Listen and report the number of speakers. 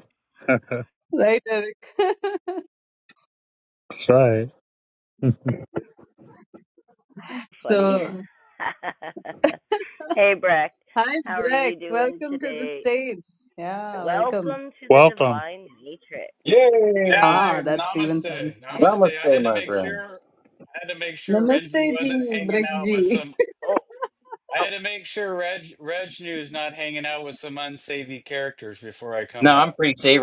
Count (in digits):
5